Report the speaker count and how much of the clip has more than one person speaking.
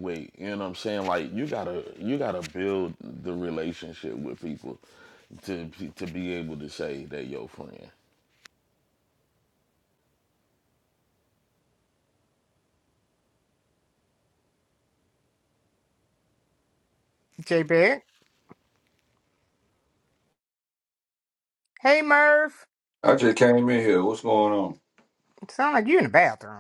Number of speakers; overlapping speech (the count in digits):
3, no overlap